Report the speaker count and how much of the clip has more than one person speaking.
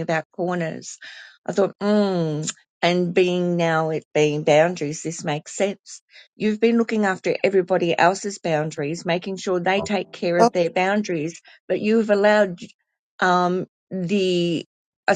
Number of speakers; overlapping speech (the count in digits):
1, no overlap